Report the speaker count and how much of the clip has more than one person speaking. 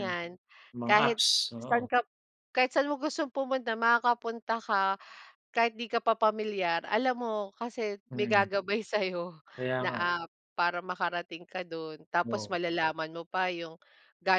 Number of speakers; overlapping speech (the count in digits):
2, about 10%